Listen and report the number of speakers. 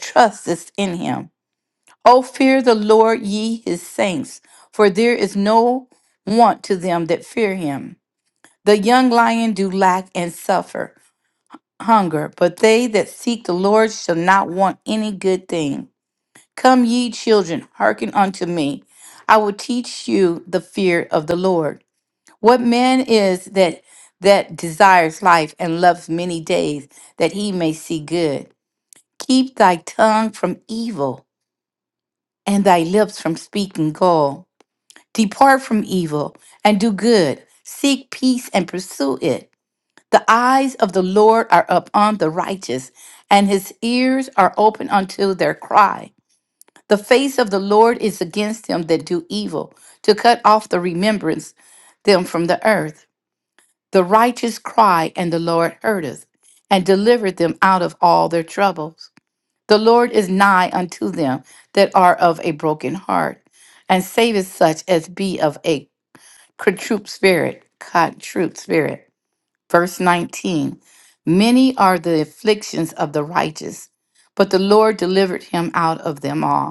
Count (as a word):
one